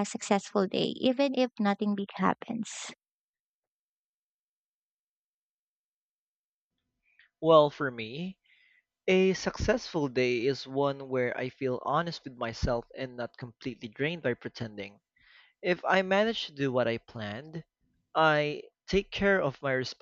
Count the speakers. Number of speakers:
2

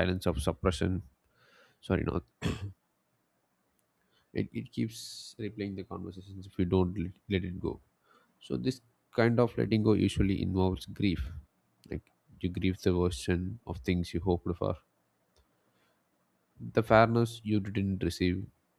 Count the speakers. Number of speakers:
1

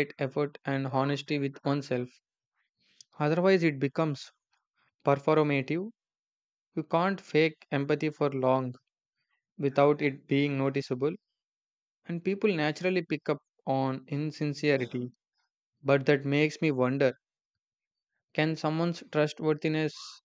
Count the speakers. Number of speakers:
1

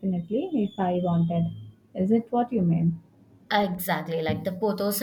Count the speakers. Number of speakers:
2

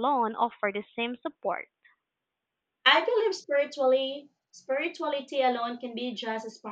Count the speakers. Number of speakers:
2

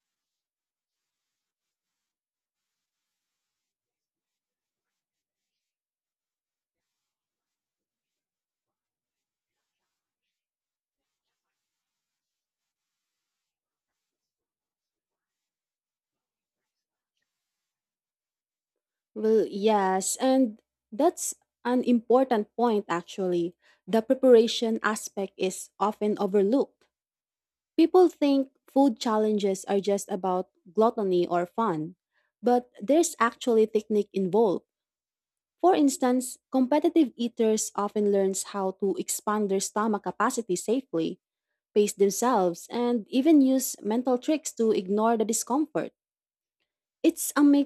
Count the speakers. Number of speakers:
1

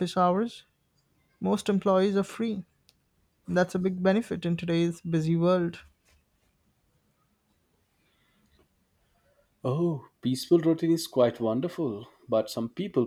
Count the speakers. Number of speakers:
2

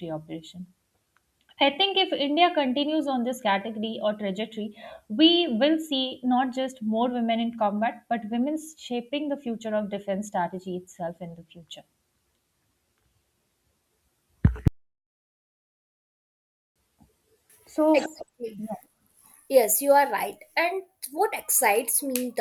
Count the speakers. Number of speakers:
2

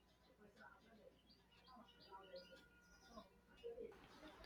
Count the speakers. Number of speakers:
0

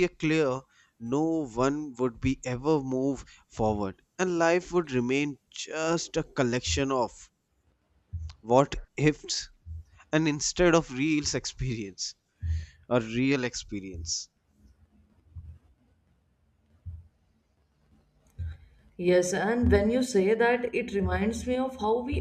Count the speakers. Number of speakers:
2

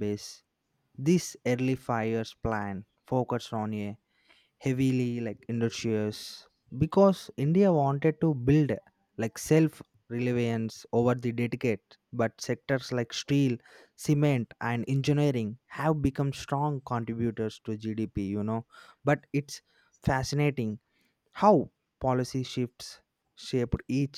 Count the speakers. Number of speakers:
1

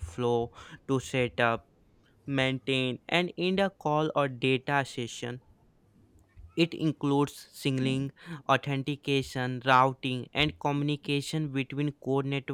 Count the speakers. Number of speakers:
1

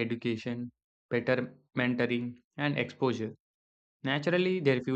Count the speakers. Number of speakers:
1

